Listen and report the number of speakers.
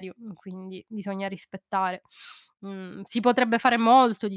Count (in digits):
1